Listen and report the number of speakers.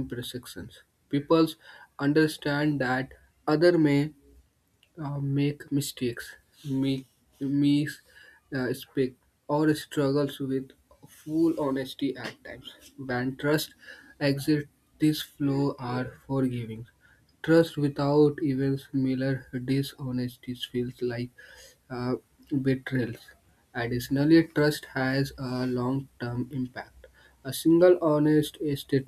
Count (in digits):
1